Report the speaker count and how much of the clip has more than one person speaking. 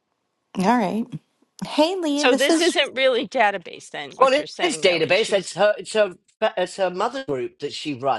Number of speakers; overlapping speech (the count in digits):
3, about 22%